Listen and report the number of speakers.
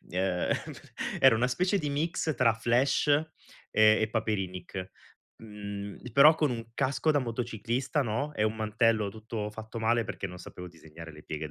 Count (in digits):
1